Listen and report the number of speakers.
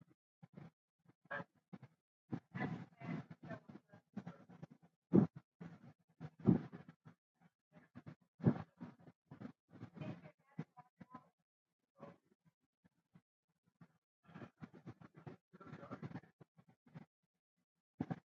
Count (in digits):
0